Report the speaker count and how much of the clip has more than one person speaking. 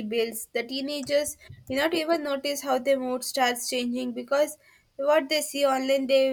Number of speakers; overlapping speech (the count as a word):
one, no overlap